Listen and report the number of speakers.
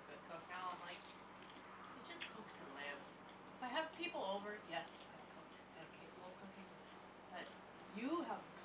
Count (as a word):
one